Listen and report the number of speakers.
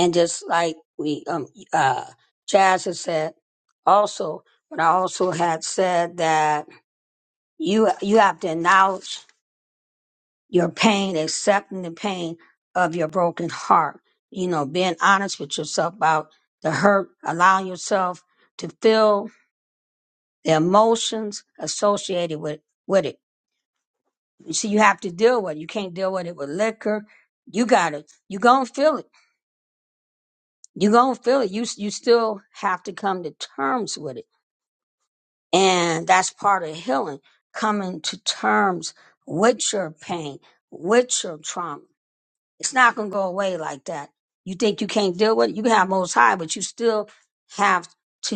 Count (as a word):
one